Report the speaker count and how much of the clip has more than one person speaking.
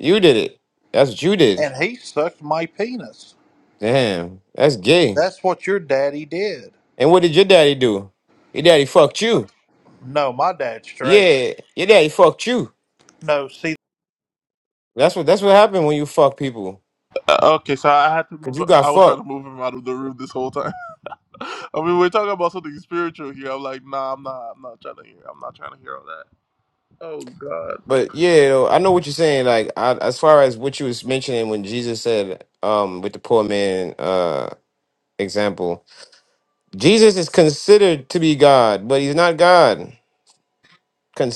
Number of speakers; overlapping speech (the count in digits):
3, about 3%